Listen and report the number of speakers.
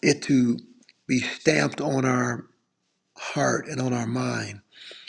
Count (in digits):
1